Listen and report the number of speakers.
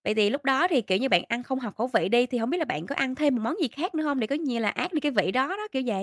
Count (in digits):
1